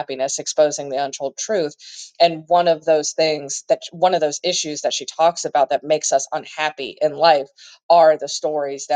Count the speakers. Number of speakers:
1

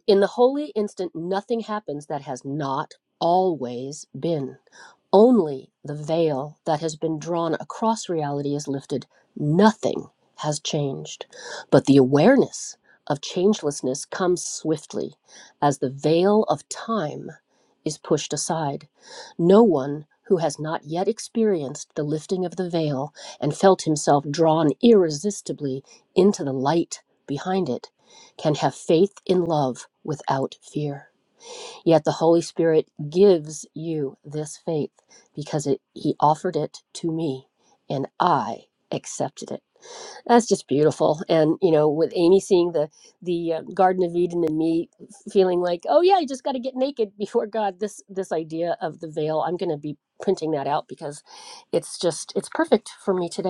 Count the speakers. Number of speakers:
1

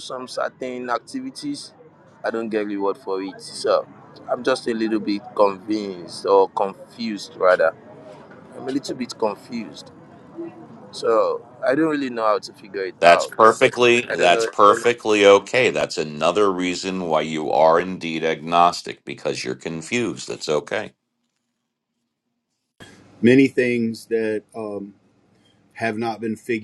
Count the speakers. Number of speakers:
3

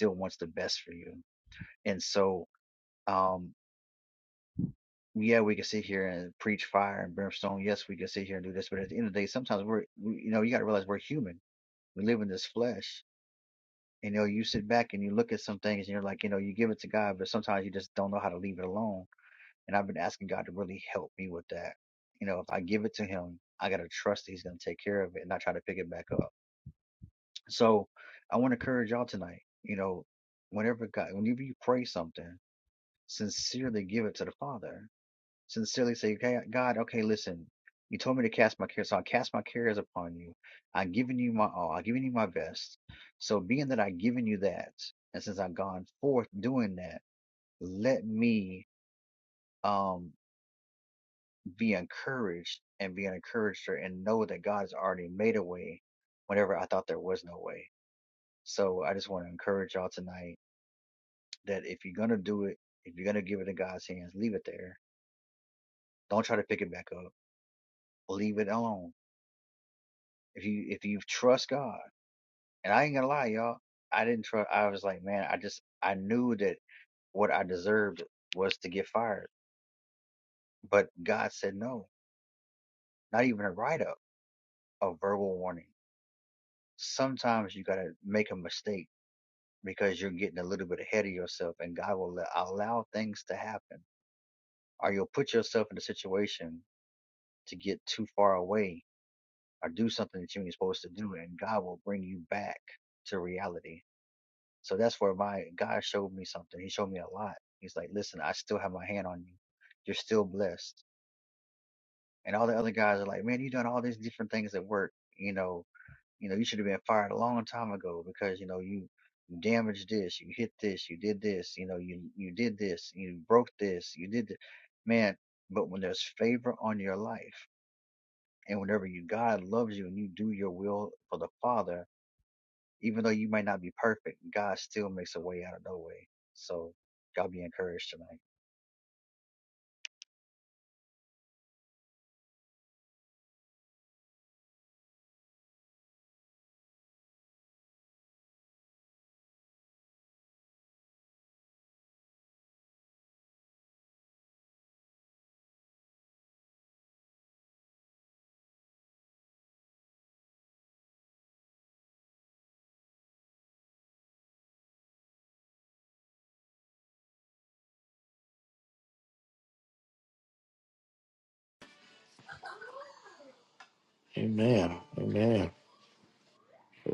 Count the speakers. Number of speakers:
2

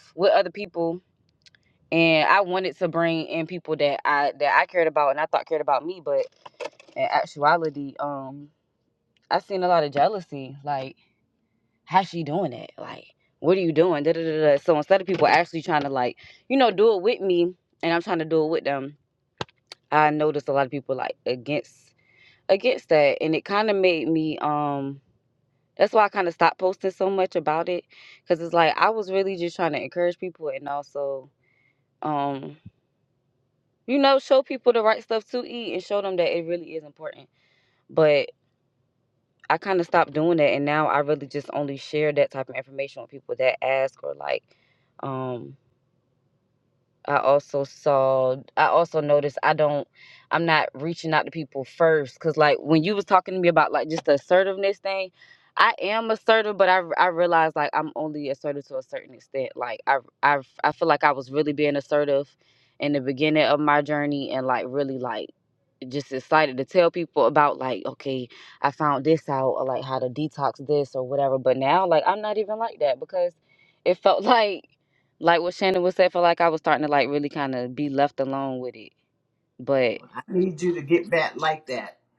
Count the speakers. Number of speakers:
2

